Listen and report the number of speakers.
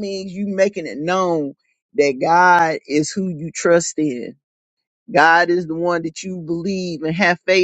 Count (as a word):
one